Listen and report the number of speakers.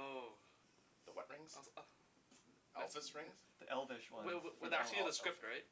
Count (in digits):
3